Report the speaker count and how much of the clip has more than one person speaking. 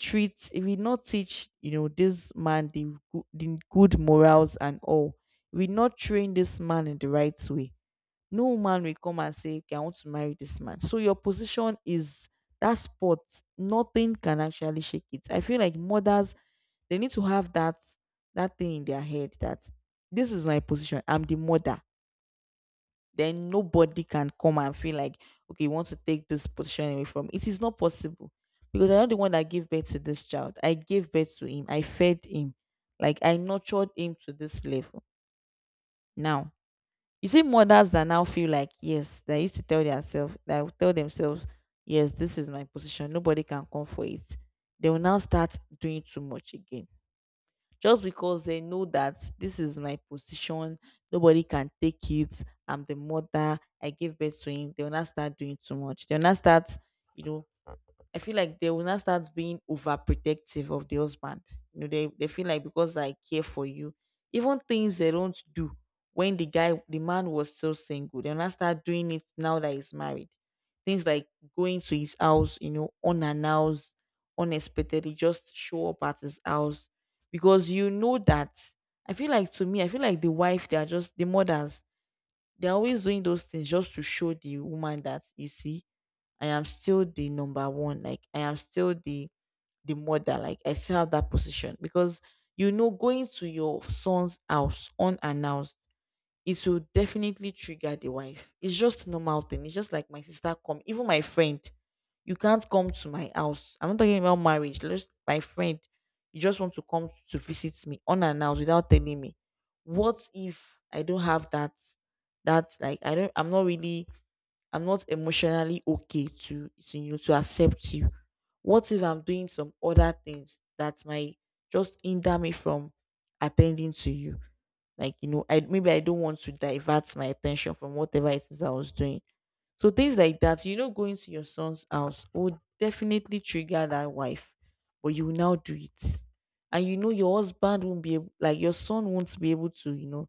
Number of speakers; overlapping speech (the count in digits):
1, no overlap